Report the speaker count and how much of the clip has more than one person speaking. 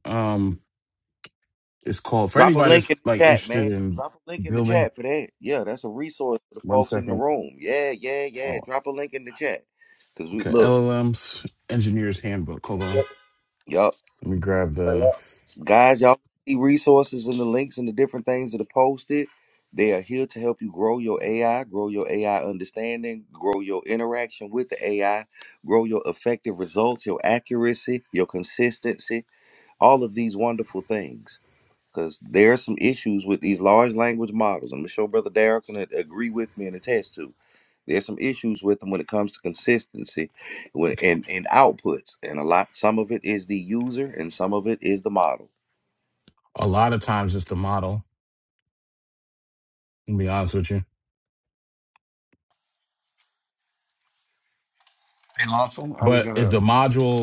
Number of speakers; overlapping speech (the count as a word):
three, about 7%